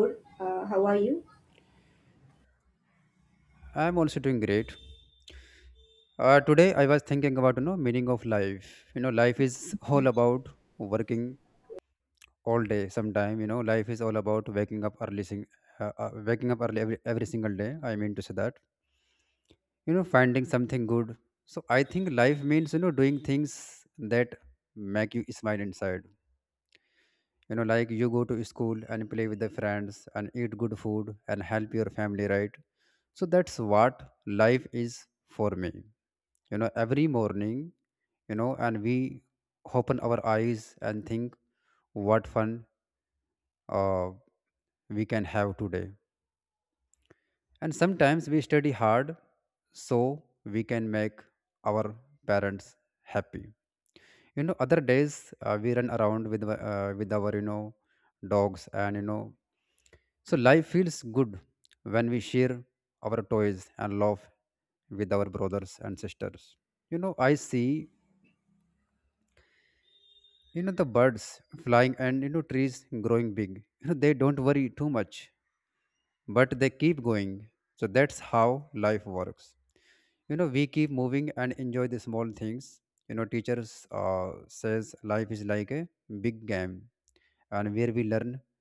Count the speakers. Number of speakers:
two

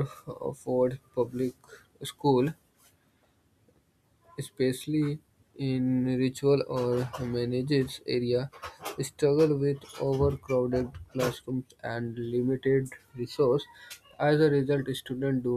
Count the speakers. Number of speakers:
one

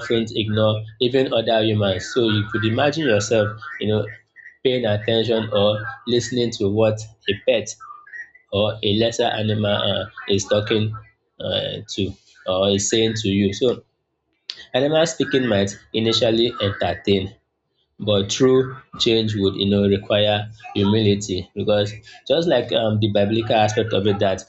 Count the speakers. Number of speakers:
one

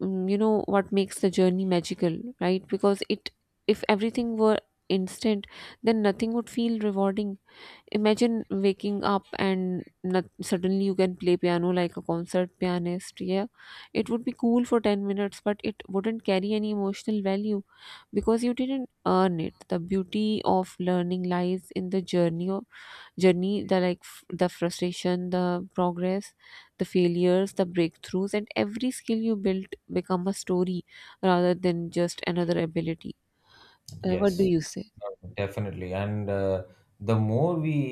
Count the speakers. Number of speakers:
two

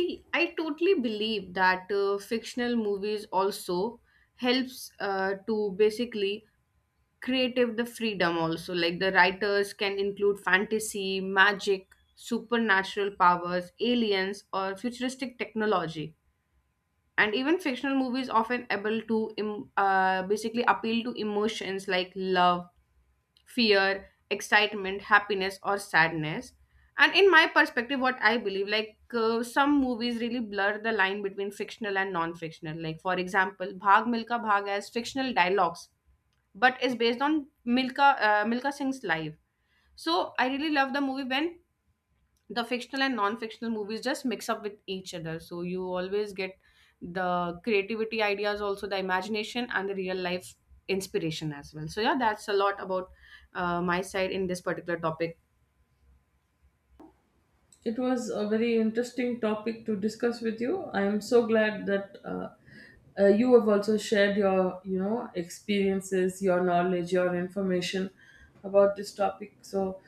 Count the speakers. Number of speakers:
two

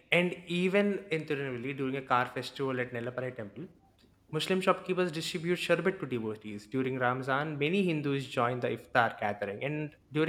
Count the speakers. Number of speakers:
one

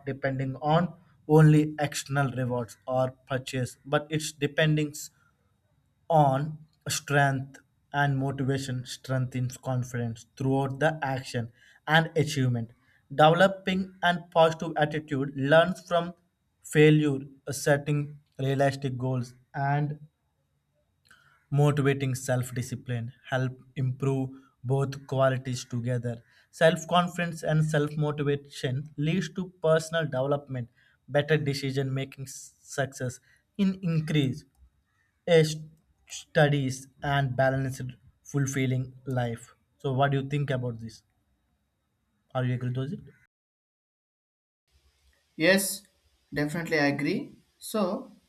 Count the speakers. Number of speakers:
two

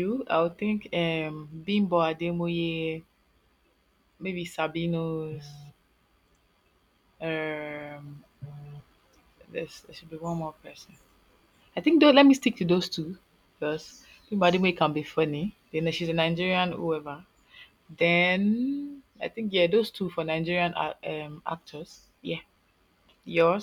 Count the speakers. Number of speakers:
one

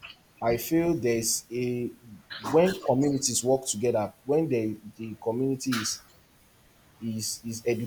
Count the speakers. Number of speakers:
one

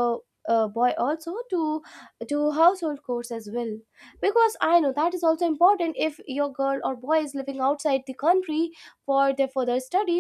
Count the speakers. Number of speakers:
one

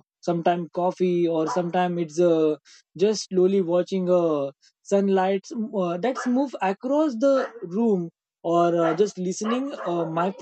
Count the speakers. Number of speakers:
one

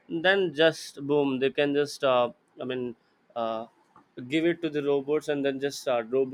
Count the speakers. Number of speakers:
one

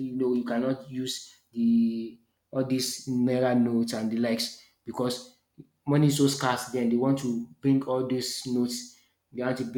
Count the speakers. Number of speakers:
one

